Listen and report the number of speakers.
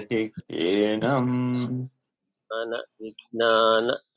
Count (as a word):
two